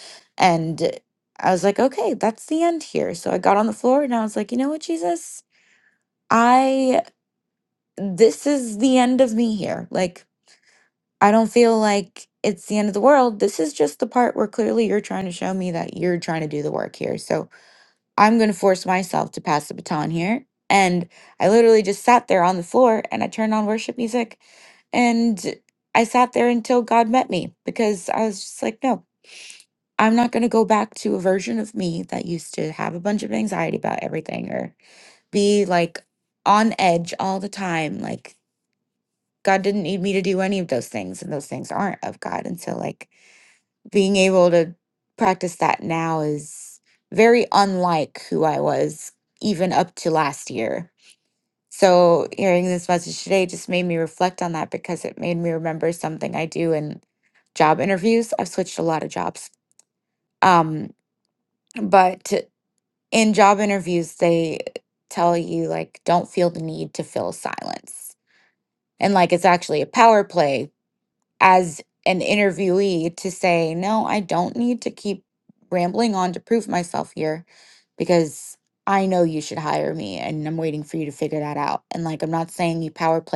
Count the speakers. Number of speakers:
one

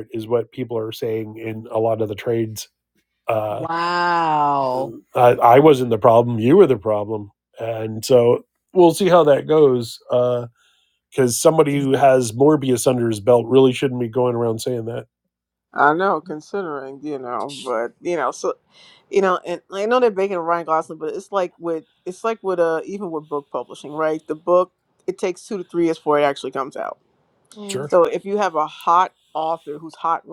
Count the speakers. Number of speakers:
three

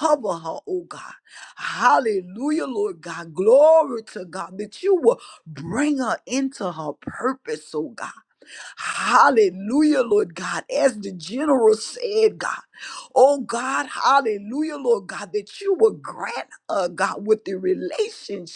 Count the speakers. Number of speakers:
one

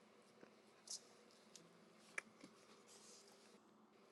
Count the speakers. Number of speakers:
zero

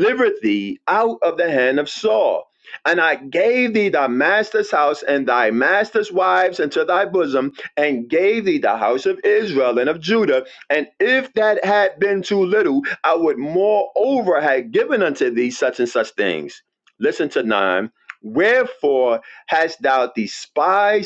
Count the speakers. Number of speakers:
one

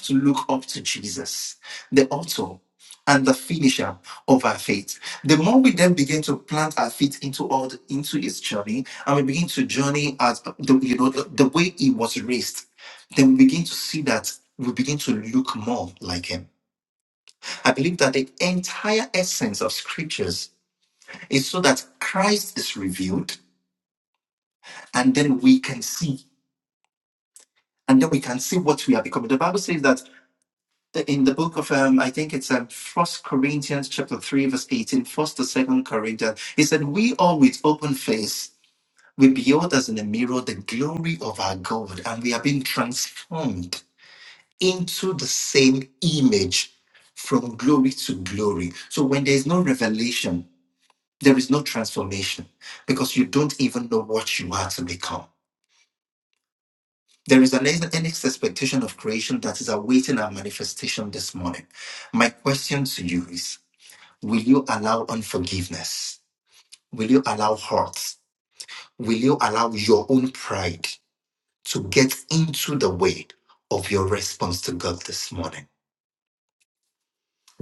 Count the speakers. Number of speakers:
one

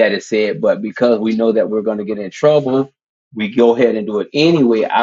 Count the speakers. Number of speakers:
one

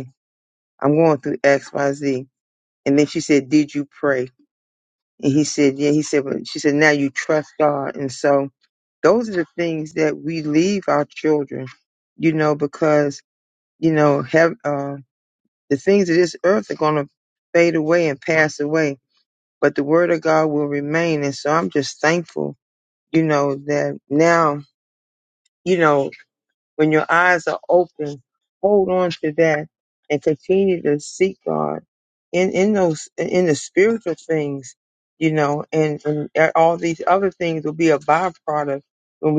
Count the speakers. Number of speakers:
one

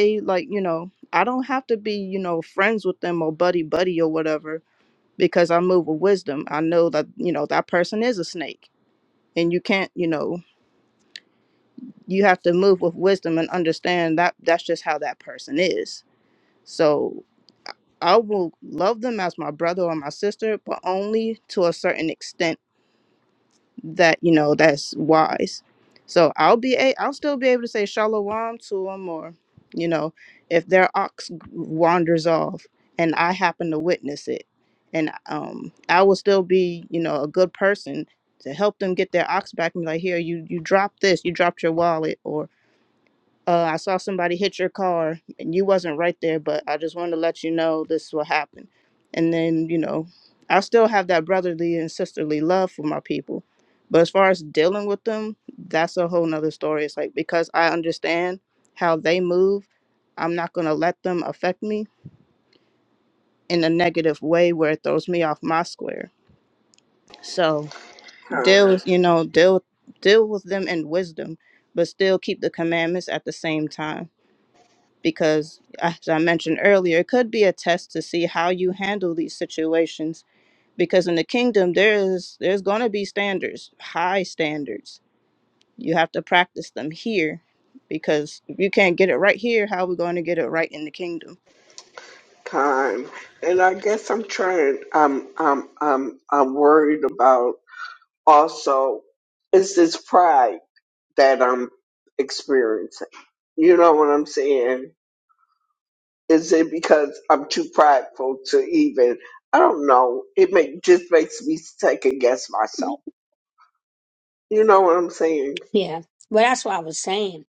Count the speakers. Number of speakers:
three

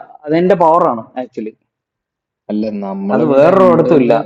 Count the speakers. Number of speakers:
two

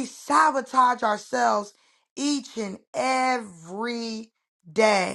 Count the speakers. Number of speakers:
one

